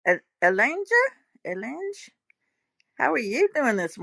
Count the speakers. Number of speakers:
1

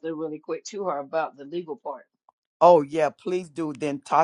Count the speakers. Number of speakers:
2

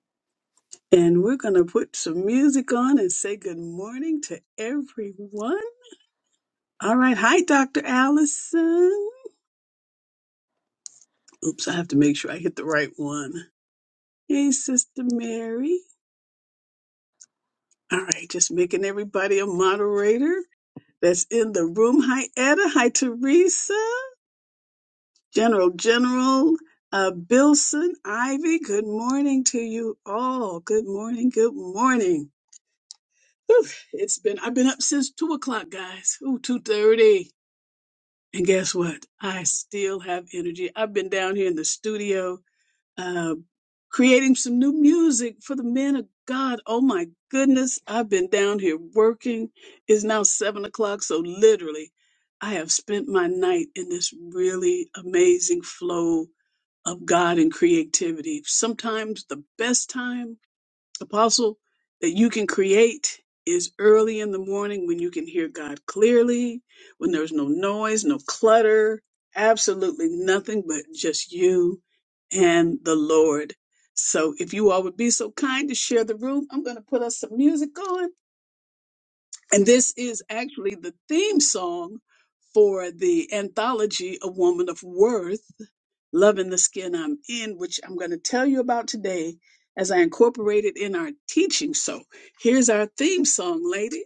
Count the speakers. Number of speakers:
1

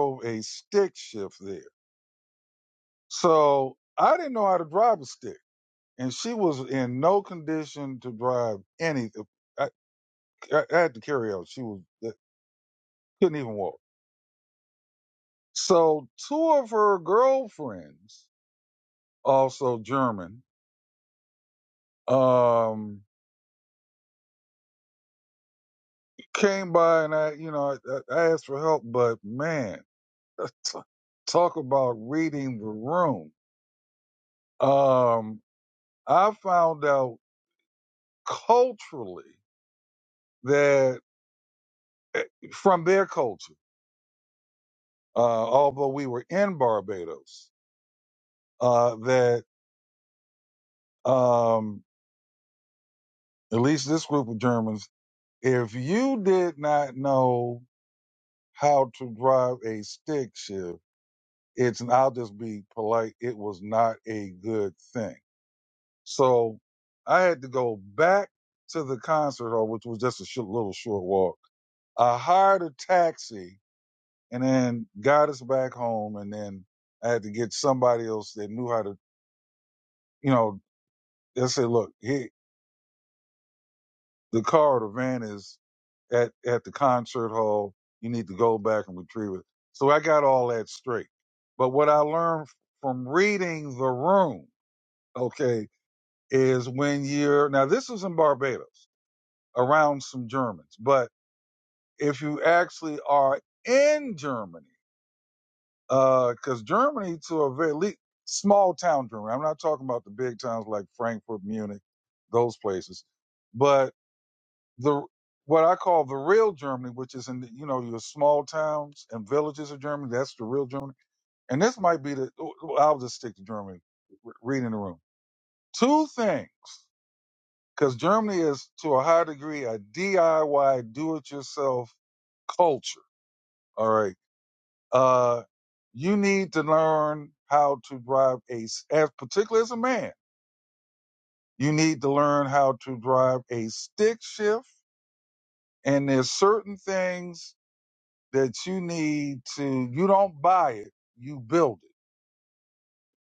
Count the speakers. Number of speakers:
1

